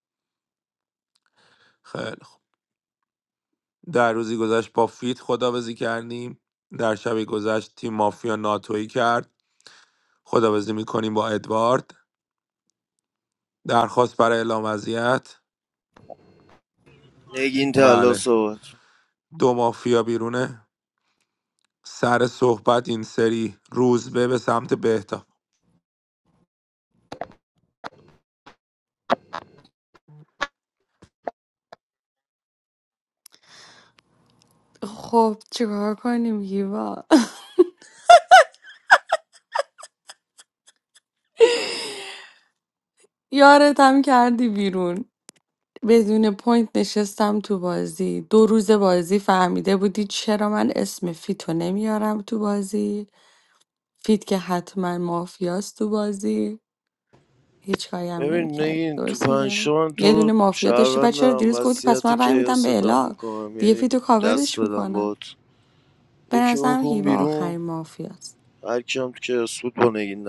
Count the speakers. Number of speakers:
3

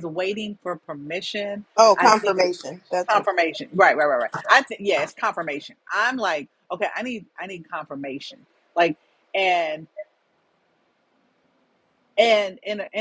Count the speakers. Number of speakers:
2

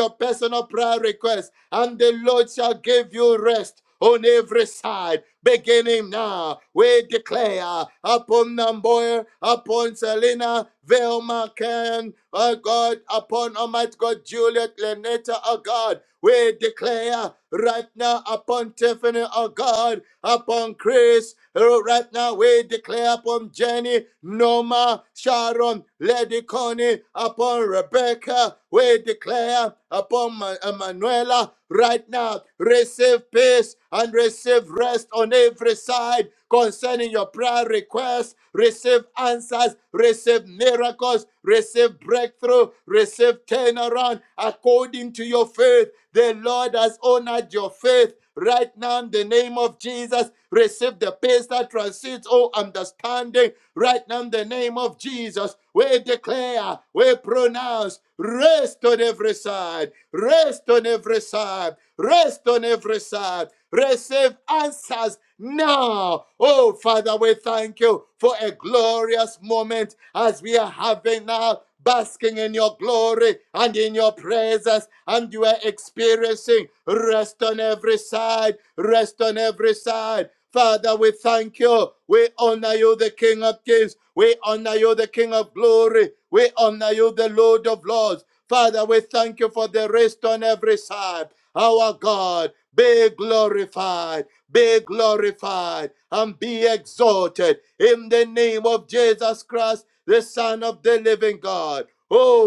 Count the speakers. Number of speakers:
1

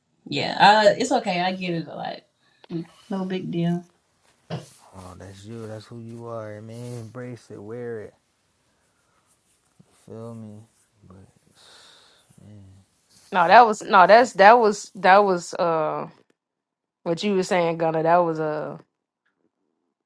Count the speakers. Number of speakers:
3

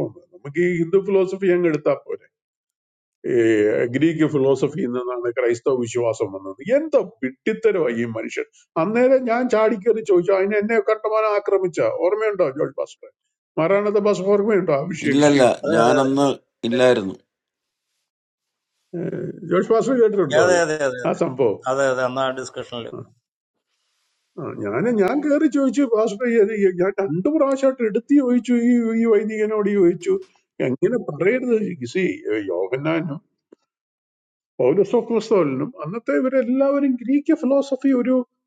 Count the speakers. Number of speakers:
3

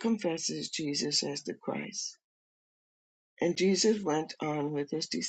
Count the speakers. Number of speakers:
1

